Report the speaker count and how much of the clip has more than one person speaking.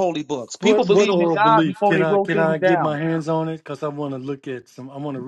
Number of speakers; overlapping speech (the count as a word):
two, about 44%